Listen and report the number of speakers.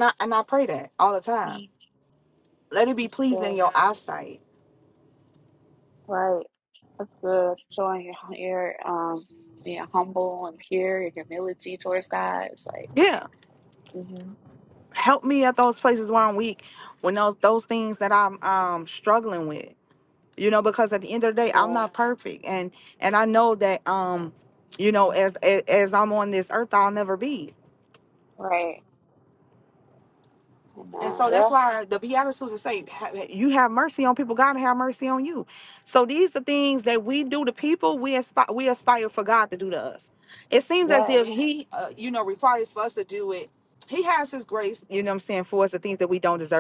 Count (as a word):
two